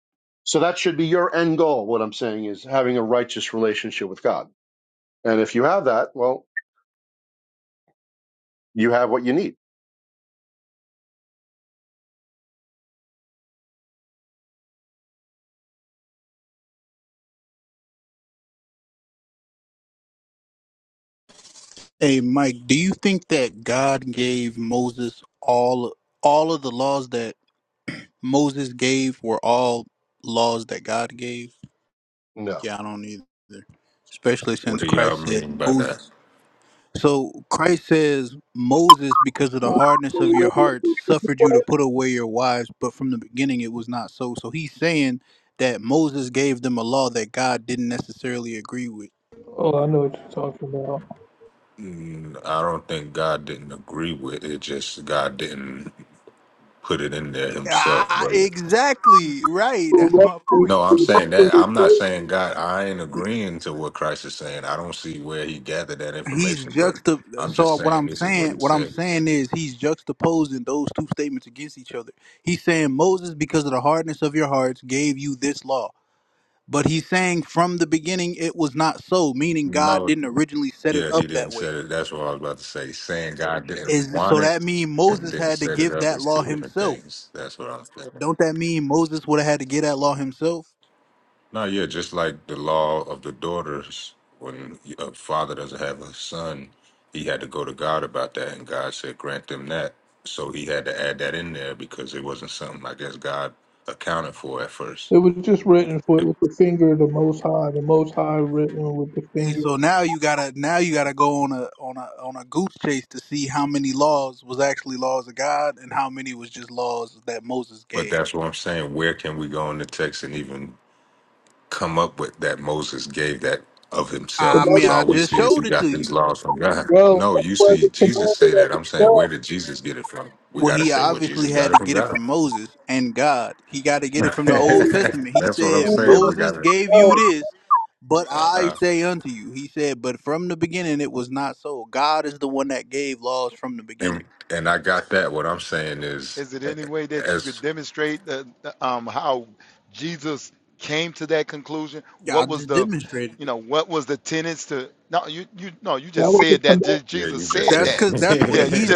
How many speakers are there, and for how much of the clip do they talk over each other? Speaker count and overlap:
5, about 13%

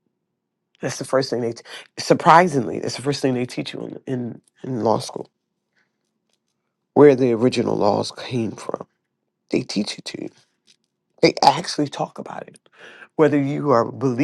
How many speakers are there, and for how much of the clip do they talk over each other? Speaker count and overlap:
1, no overlap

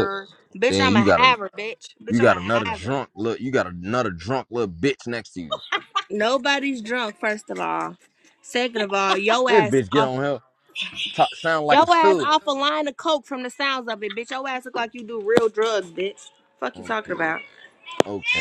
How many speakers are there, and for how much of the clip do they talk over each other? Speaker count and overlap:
2, about 18%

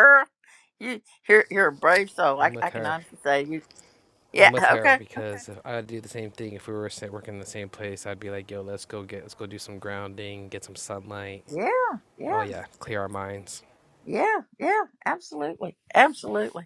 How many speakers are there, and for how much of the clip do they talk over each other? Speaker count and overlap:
2, about 9%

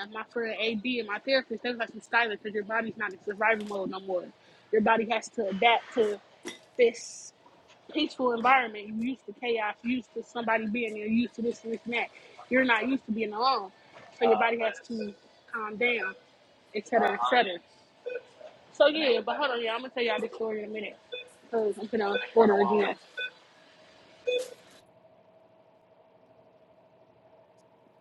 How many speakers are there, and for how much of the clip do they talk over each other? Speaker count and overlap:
1, no overlap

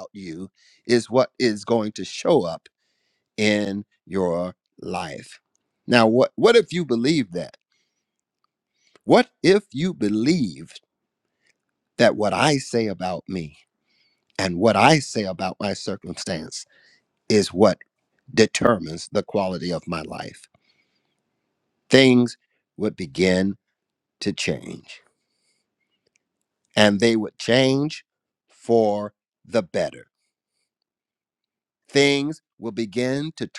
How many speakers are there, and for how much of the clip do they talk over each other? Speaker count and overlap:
1, no overlap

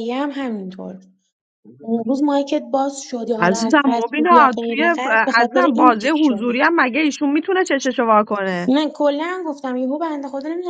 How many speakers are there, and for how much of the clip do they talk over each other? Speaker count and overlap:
2, about 30%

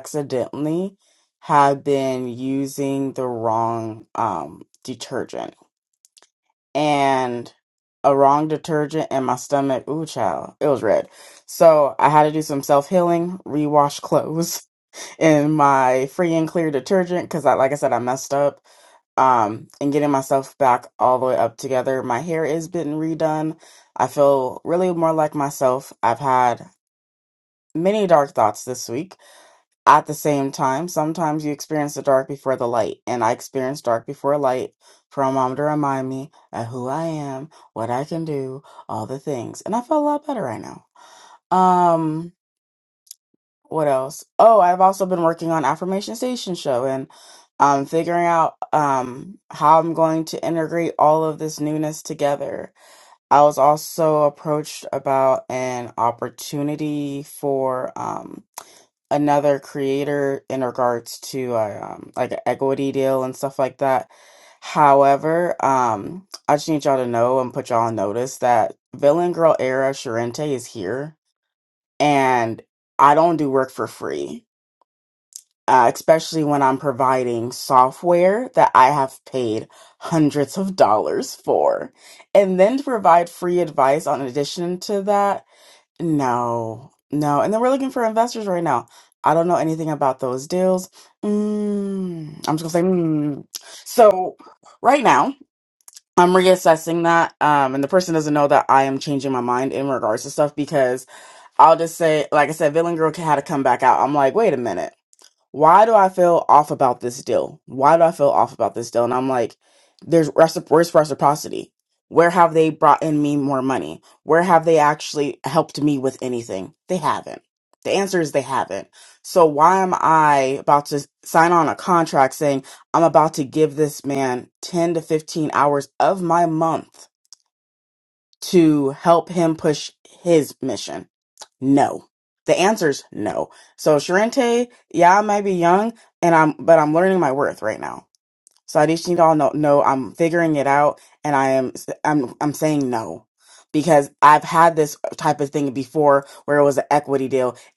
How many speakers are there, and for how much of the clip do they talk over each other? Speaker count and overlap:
1, no overlap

